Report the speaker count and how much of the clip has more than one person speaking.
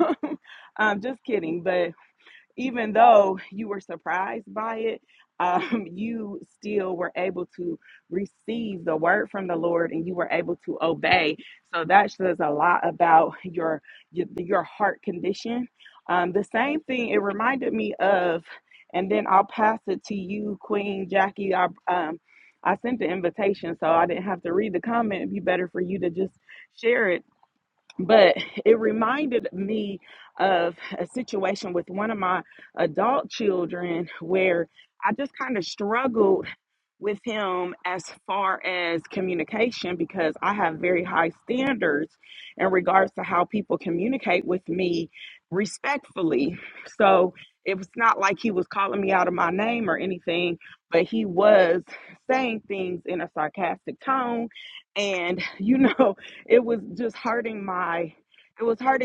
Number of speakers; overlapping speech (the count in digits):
1, no overlap